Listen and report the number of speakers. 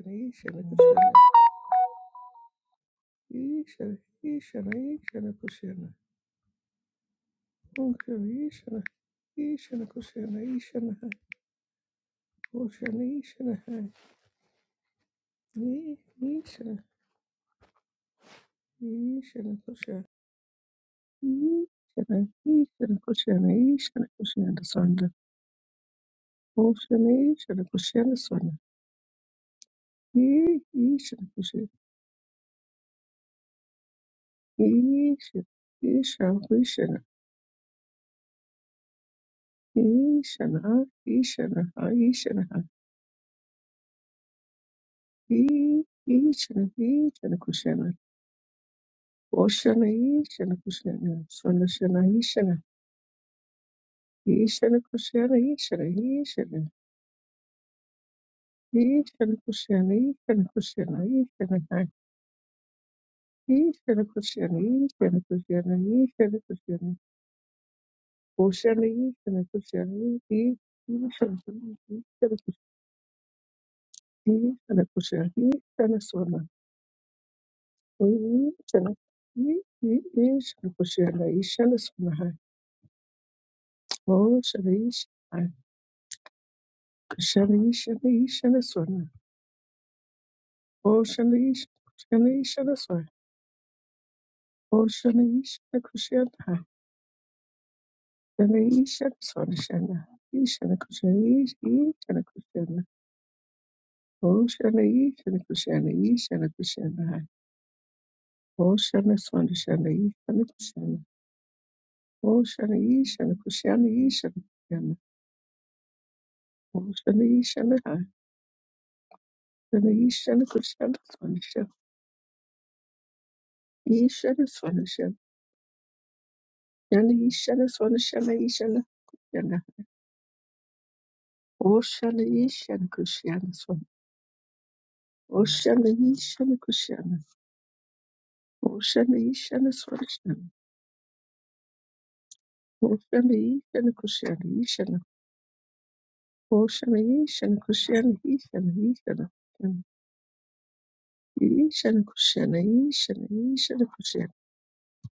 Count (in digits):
1